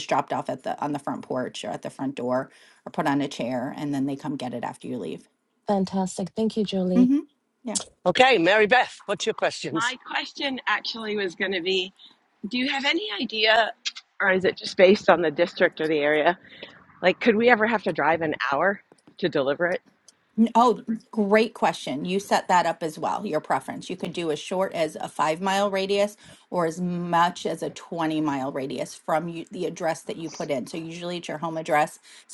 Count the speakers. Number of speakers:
four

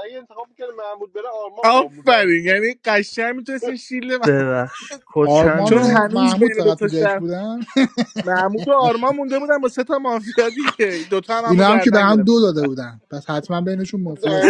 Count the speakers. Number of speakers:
four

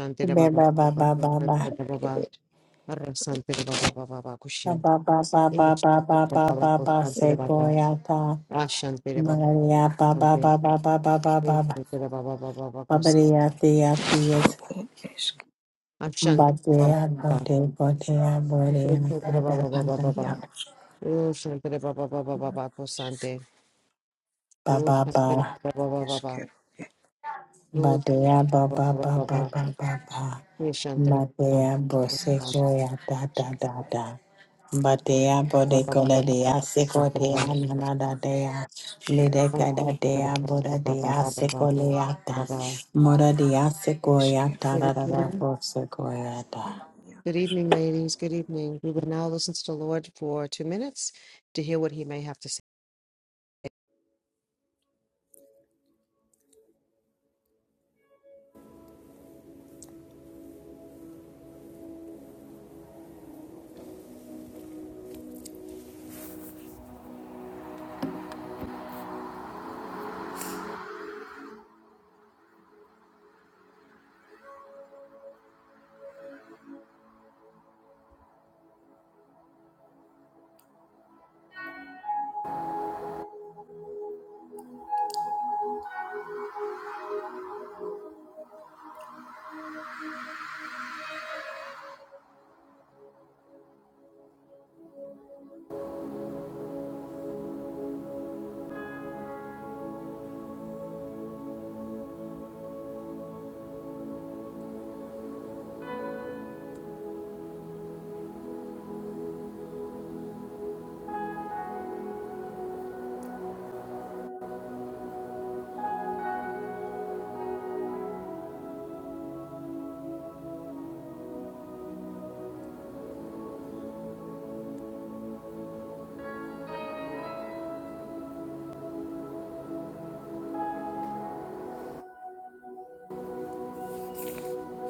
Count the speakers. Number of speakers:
three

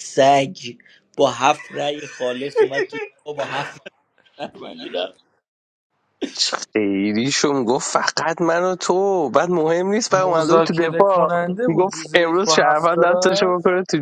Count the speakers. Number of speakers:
three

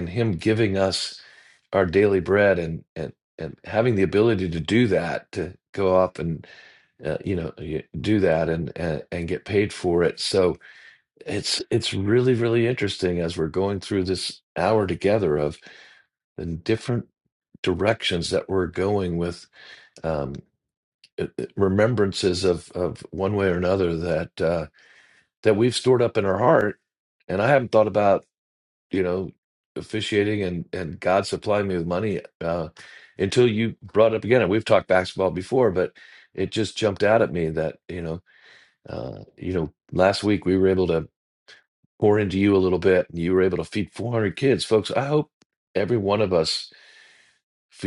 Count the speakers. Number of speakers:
one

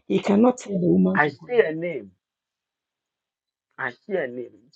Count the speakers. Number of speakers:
two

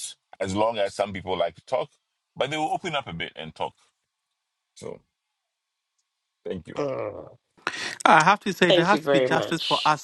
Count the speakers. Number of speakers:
three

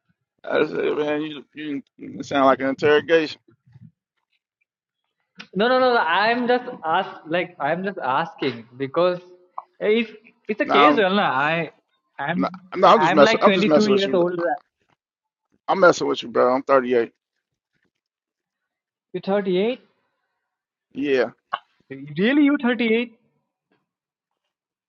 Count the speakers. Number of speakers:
two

